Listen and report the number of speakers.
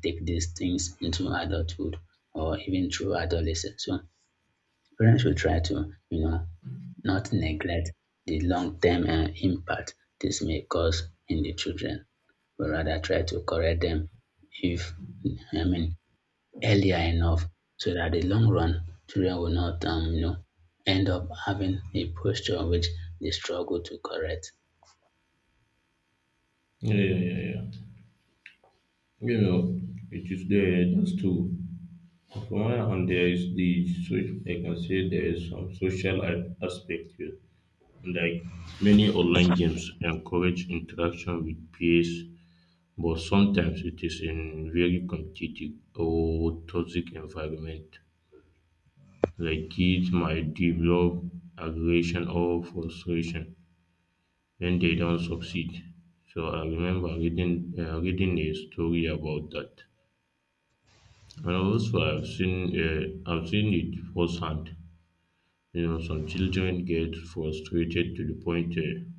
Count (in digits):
2